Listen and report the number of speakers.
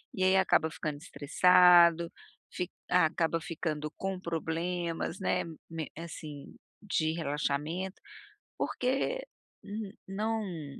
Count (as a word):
one